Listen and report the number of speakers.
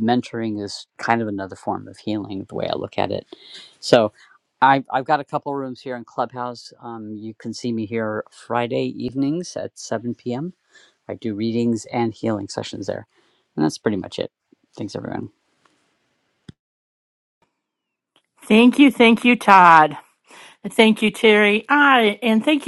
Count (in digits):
2